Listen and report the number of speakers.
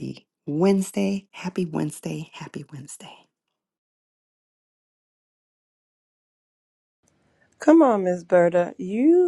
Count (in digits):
2